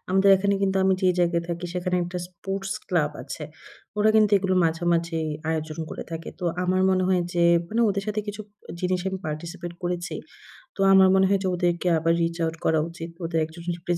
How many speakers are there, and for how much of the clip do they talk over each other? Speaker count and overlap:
1, no overlap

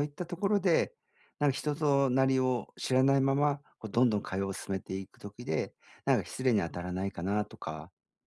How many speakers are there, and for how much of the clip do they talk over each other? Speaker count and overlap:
1, no overlap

